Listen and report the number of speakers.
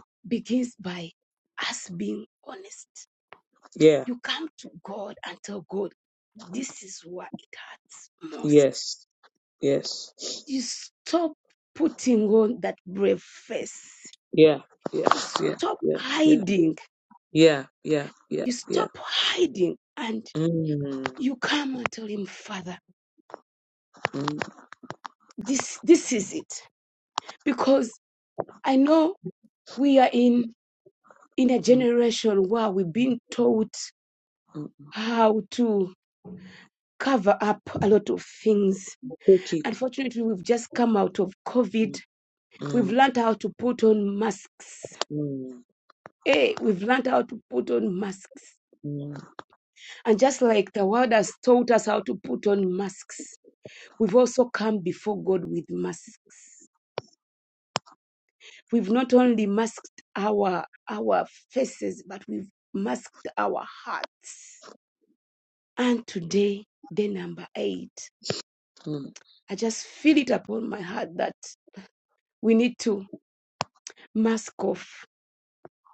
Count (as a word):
two